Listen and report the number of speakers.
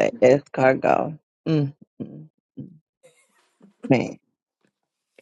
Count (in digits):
1